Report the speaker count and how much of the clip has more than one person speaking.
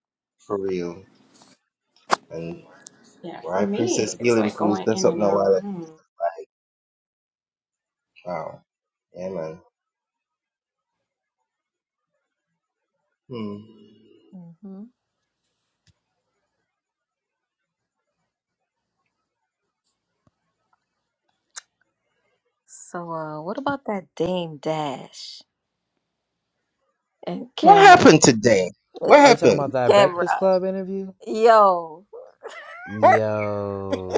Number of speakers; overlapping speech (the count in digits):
4, about 10%